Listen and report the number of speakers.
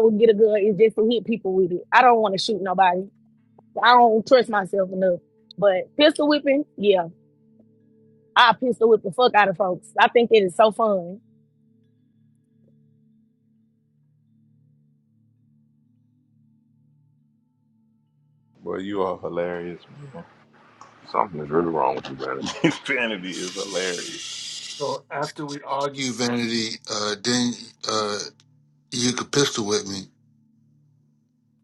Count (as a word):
four